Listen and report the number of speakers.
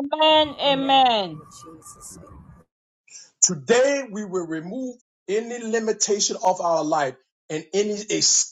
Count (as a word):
three